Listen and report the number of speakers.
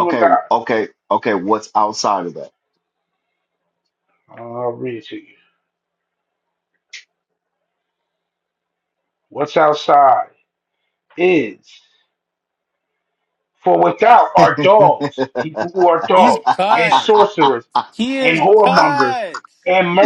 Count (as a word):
three